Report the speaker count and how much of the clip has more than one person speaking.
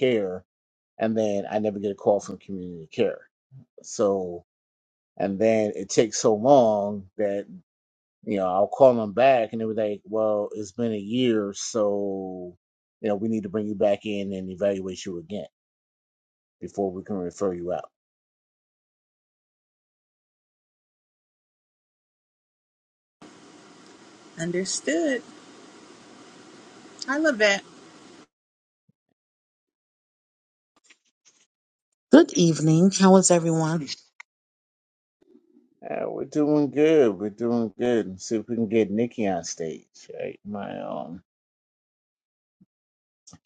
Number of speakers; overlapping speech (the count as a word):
three, no overlap